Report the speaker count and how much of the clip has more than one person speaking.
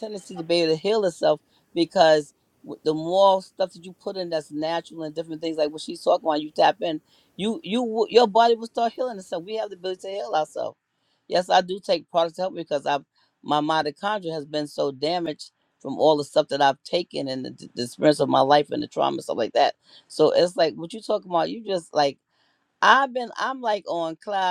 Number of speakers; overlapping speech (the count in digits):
1, no overlap